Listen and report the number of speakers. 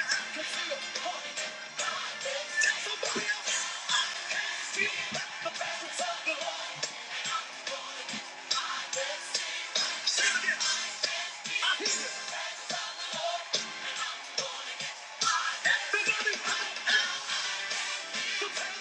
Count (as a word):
zero